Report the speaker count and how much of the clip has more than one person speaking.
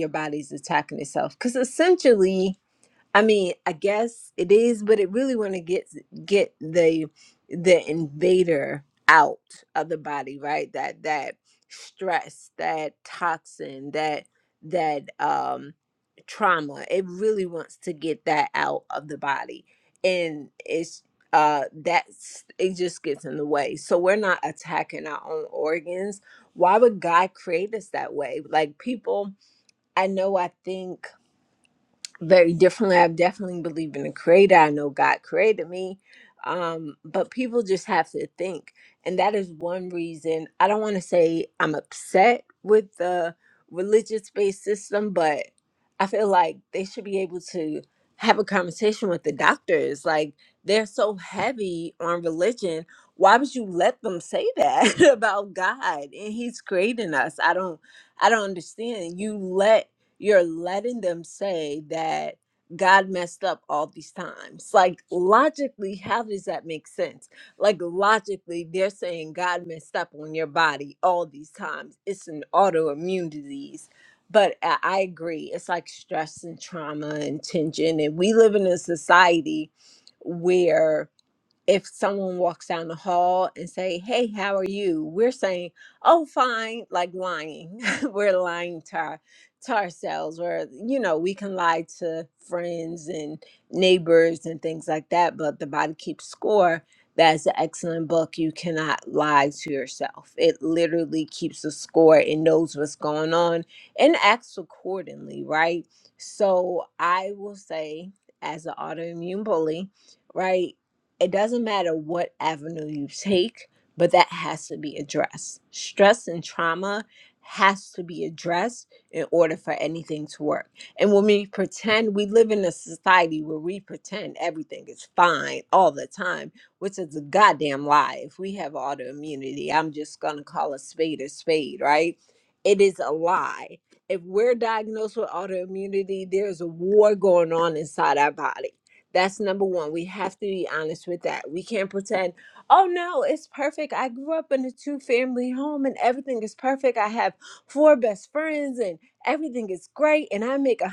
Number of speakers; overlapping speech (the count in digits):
1, no overlap